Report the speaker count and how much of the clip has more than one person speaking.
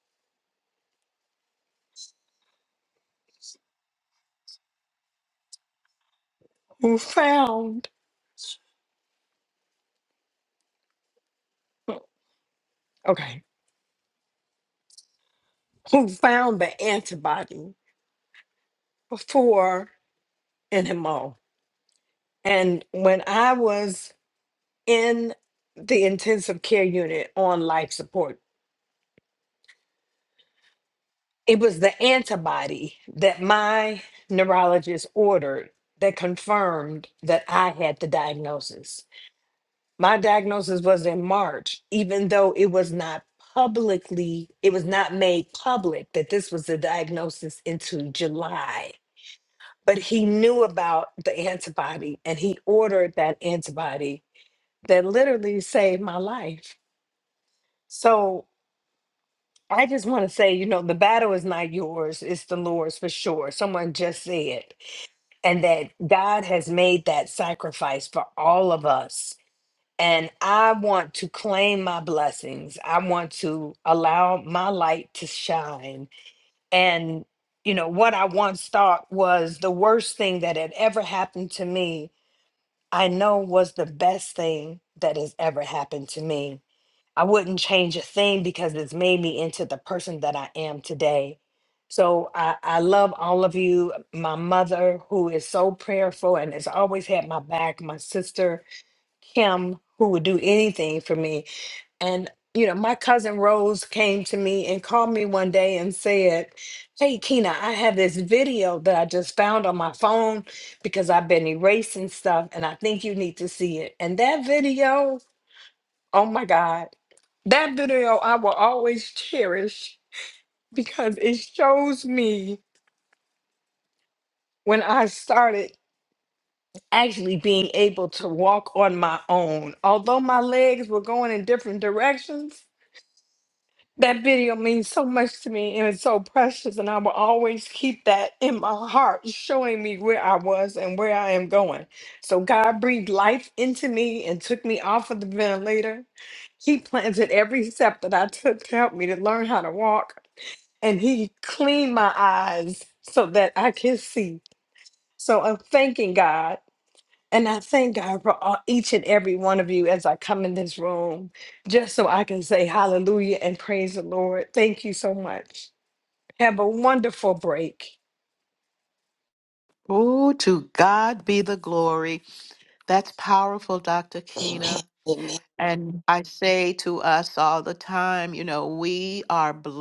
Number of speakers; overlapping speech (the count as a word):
two, no overlap